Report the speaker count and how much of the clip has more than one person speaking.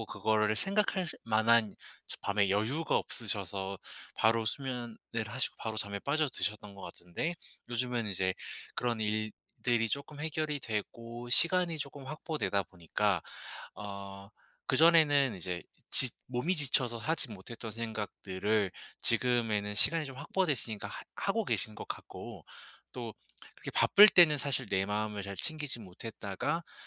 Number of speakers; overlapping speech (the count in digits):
1, no overlap